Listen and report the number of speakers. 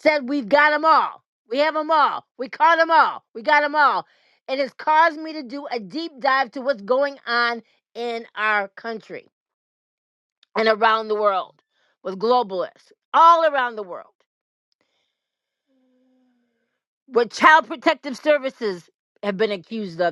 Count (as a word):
one